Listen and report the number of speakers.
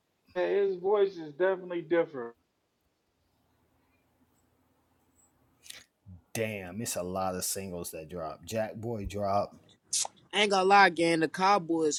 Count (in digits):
3